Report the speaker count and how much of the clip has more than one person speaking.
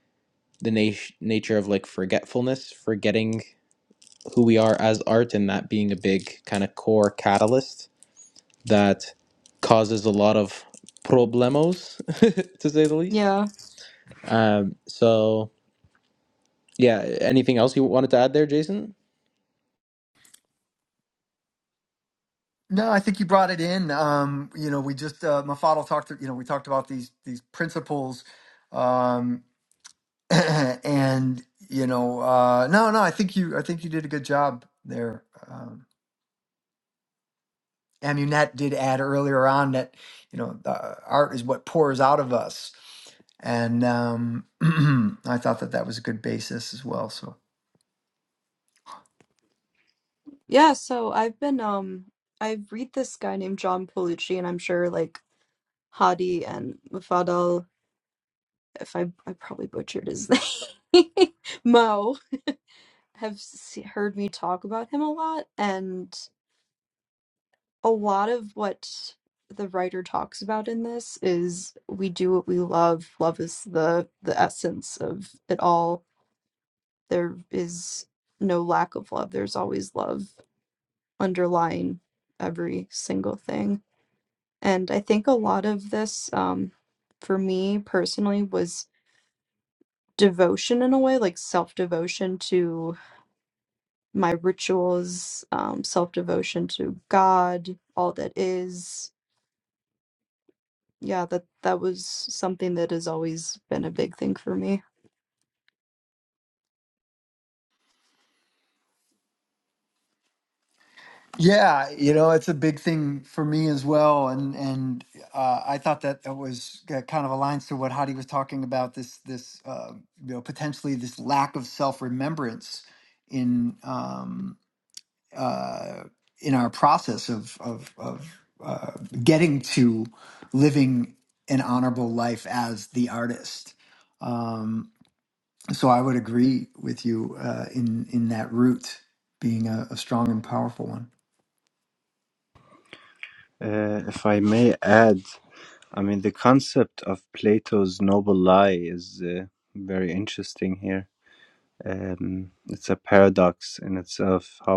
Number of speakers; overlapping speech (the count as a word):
four, under 1%